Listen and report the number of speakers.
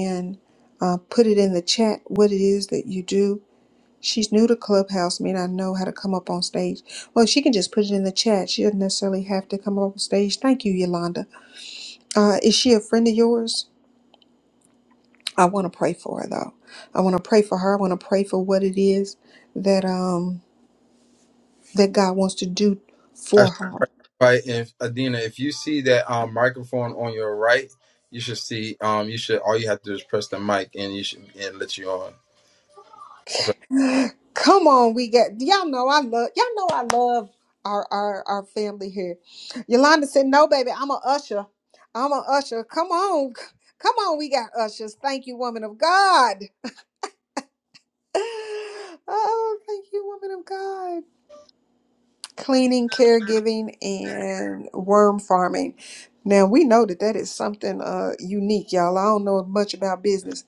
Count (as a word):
two